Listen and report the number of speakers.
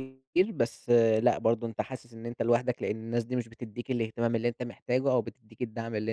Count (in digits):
1